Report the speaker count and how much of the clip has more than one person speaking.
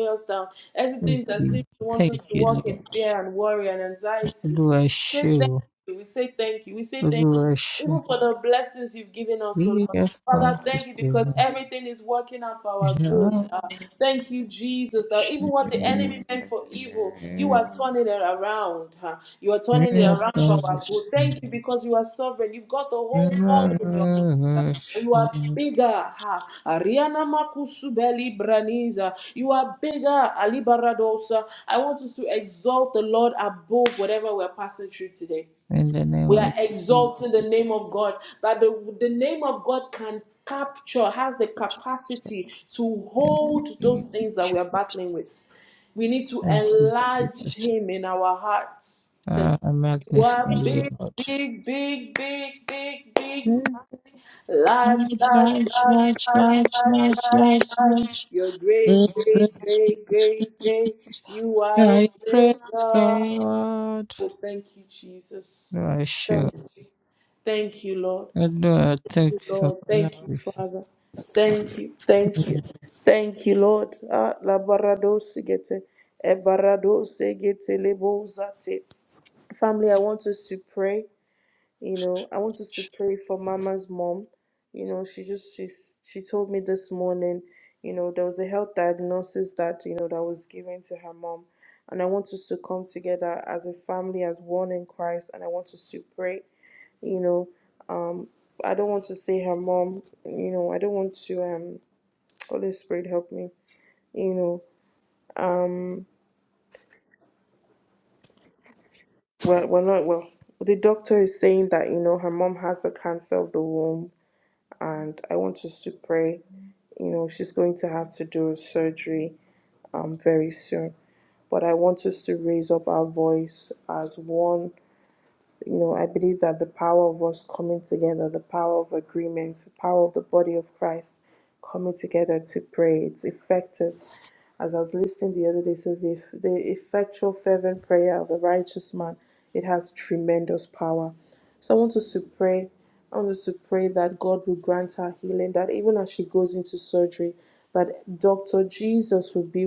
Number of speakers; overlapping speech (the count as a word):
two, about 12%